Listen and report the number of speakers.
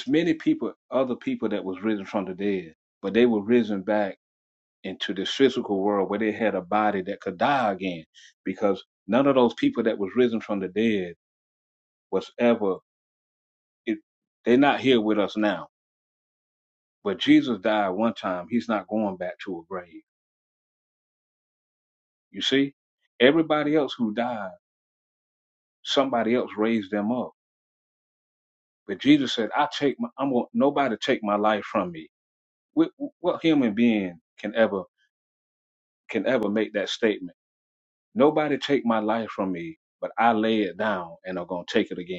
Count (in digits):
1